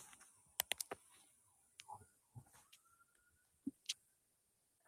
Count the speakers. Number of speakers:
0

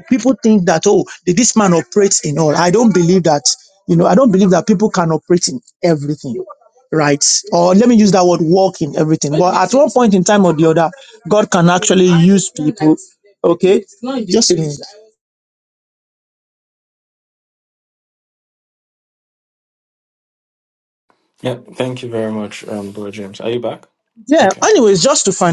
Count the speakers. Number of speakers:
2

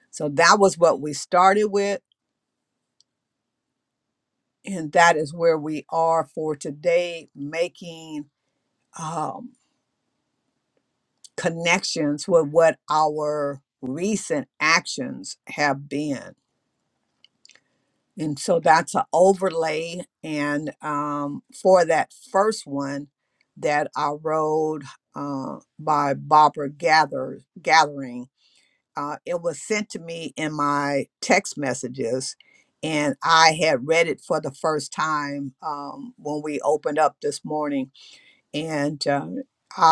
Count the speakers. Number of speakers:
1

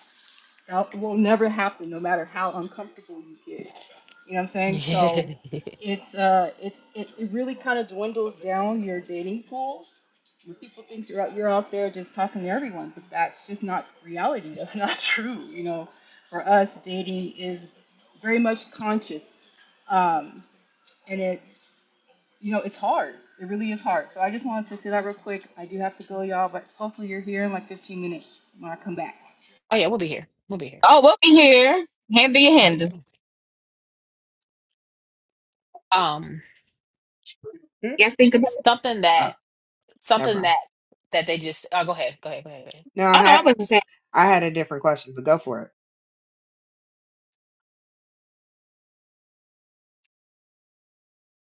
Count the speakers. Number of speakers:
4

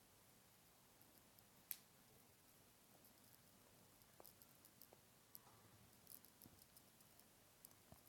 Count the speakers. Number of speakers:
0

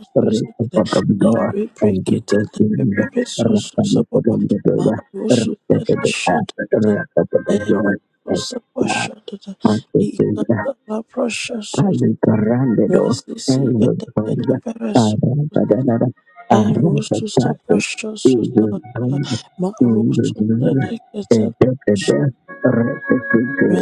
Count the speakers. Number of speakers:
2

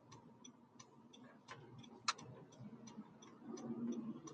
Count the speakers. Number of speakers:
0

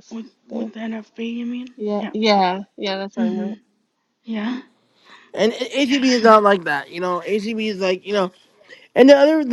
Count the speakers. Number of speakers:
3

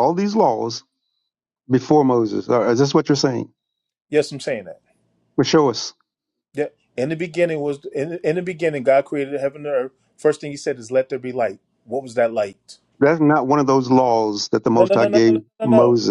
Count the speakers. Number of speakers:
2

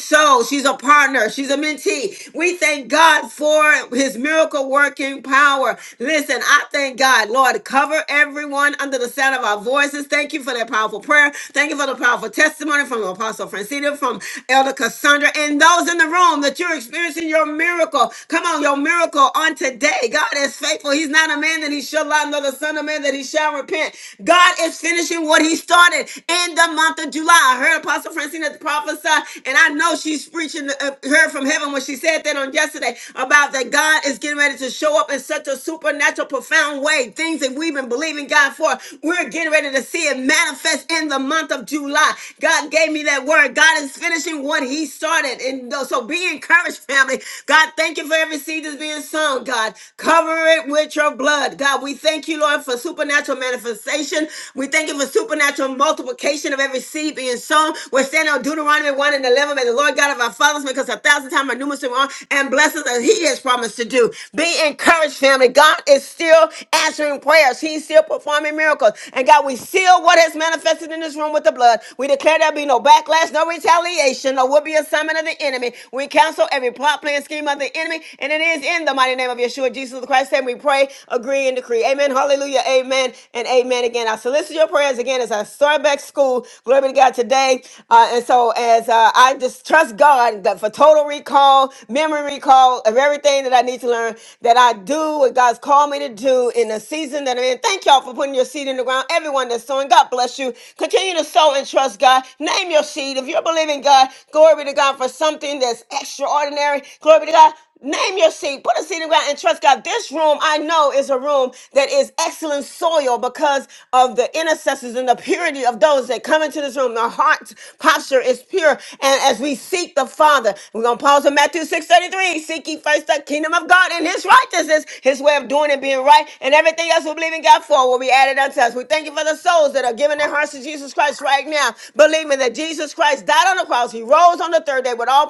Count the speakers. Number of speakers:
1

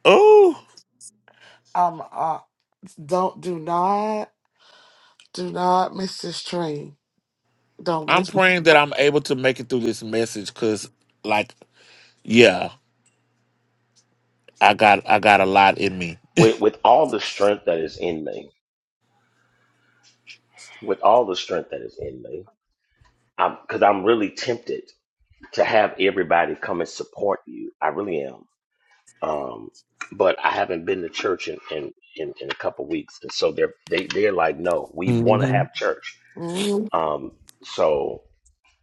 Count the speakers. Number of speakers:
3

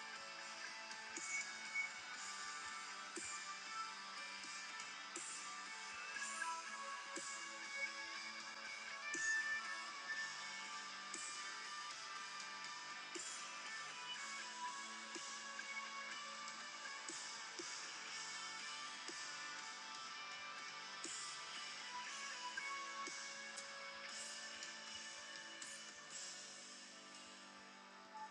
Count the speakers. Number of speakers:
0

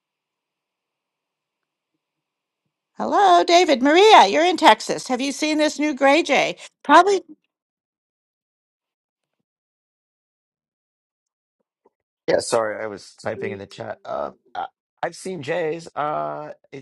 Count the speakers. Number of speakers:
2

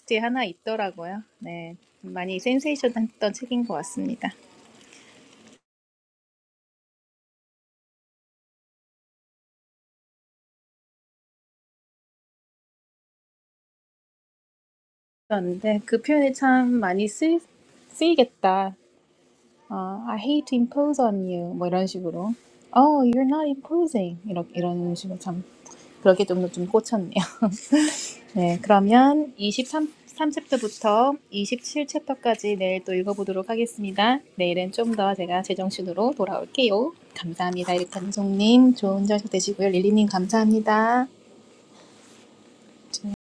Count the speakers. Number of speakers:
1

